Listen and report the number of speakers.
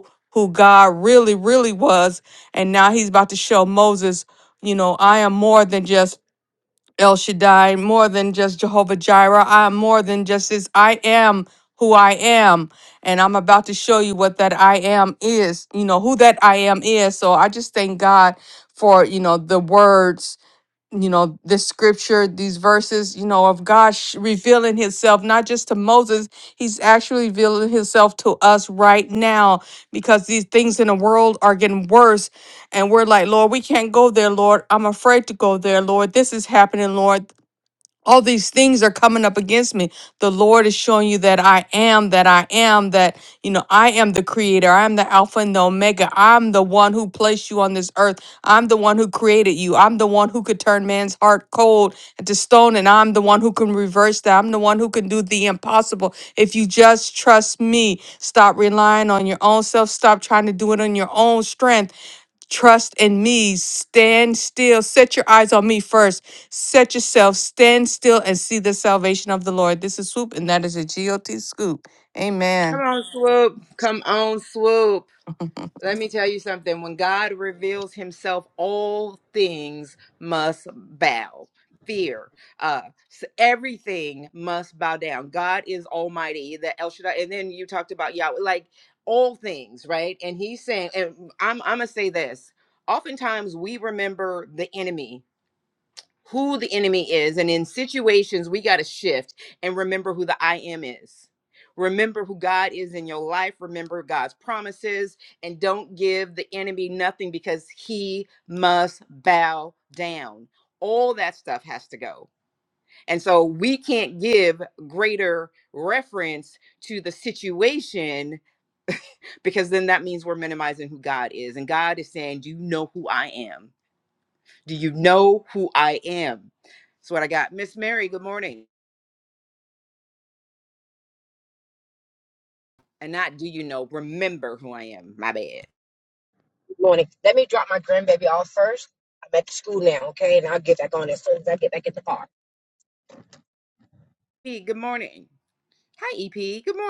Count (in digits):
3